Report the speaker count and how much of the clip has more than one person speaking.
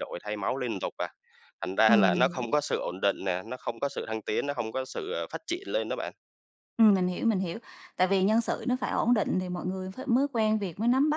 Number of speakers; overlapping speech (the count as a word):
two, about 5%